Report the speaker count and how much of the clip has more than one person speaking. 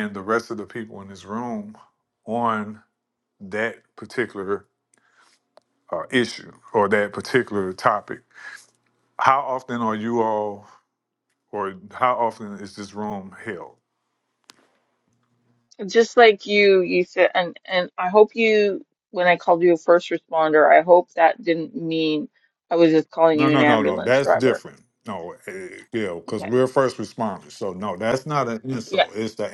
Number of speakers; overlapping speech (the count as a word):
two, about 5%